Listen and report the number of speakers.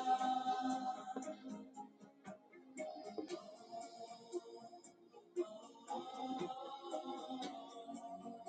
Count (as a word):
zero